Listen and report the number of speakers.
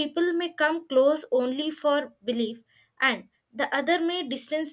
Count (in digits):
1